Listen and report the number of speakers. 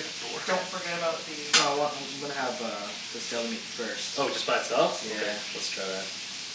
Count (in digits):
3